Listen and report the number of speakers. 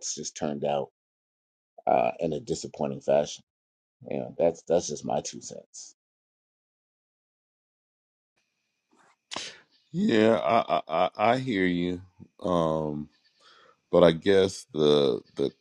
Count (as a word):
two